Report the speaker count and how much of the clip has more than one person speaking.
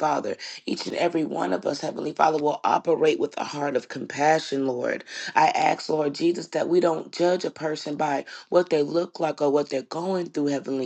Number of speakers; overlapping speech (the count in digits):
1, no overlap